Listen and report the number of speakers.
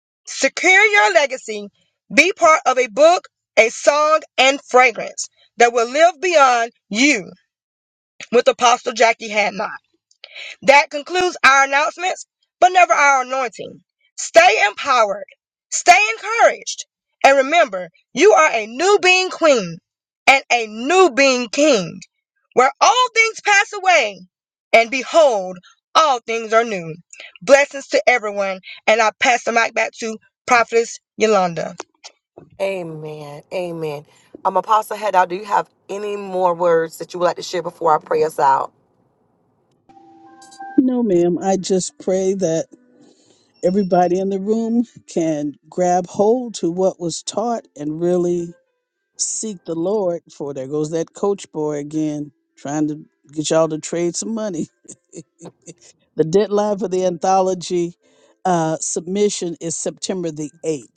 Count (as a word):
three